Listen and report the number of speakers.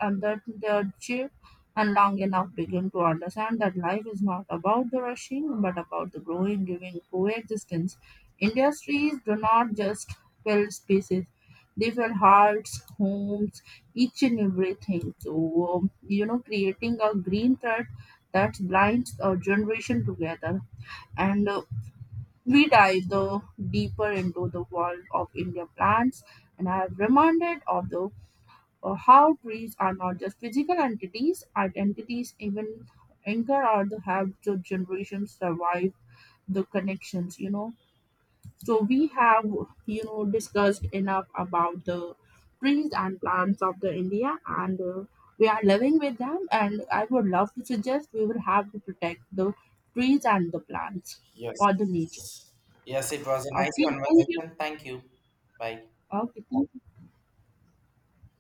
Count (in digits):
2